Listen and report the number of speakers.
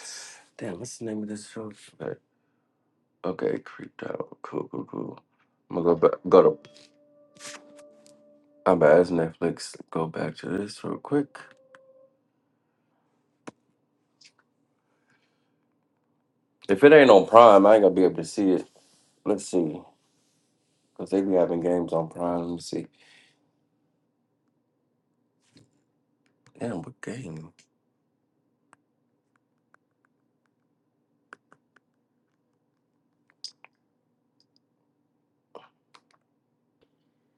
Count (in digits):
1